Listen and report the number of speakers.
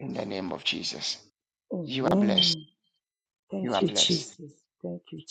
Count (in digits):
2